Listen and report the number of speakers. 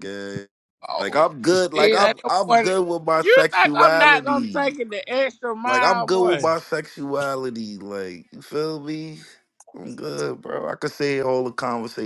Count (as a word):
two